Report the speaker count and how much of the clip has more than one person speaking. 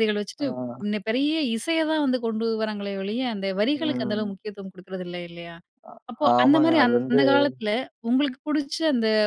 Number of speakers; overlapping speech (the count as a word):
two, about 16%